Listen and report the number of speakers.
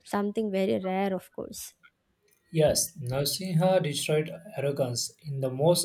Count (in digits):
2